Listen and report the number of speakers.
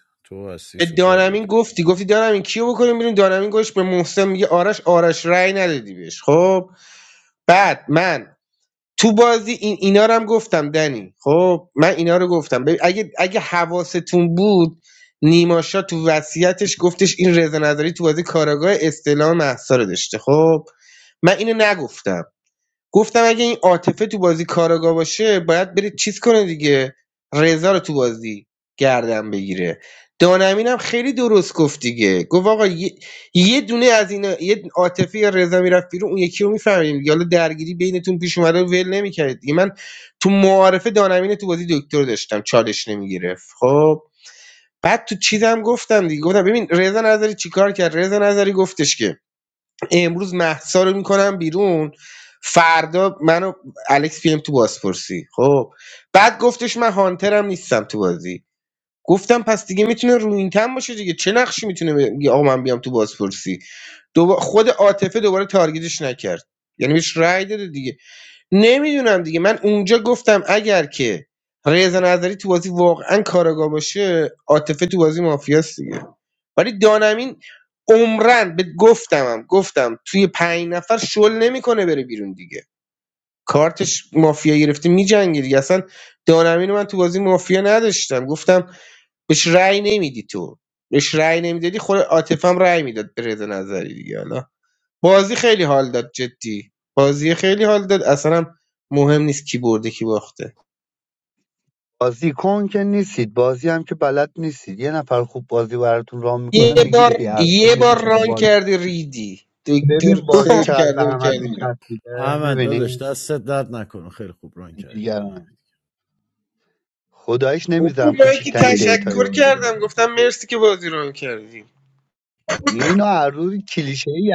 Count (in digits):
3